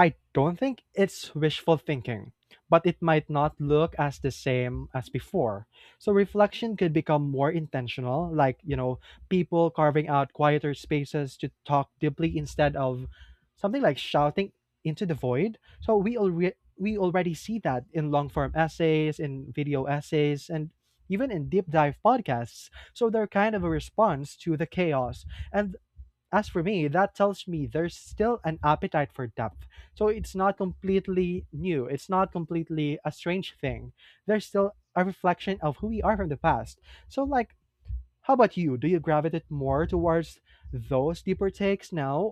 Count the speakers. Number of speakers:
one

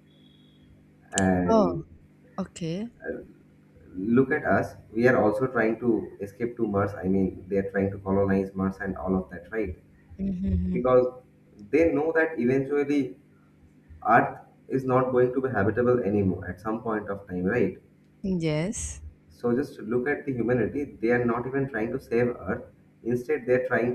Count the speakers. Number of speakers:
two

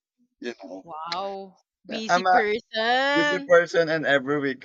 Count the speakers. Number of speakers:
two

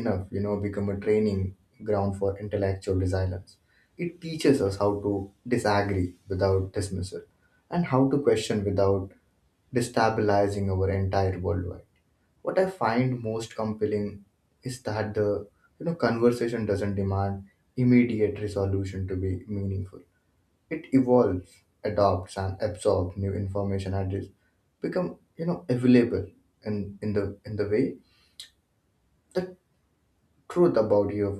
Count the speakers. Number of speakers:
one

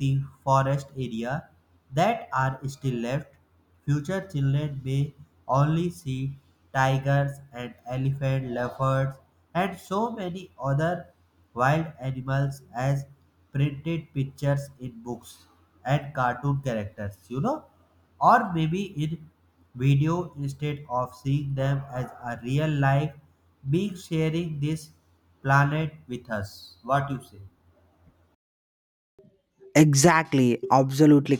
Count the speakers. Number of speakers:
two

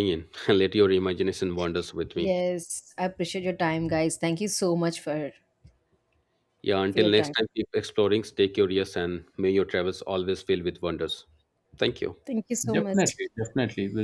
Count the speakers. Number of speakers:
three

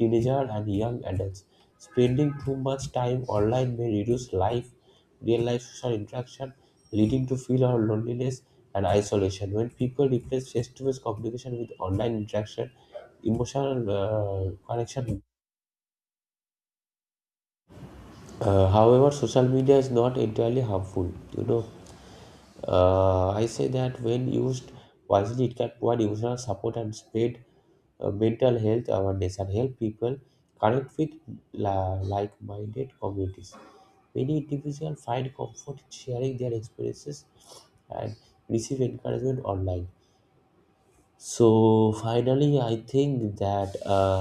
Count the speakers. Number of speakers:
one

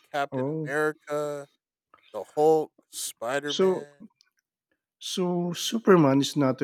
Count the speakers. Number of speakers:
two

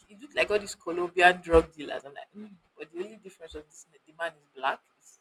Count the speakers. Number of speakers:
one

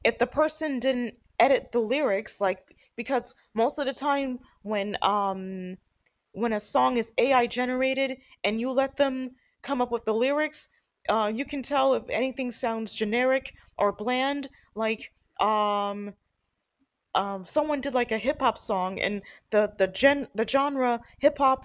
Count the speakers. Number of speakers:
one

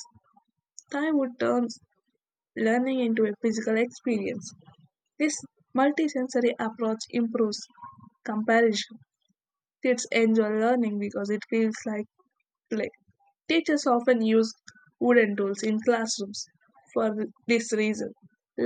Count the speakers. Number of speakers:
one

